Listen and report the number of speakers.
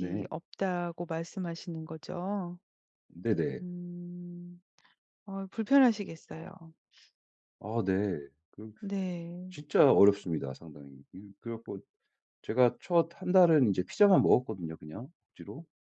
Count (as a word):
two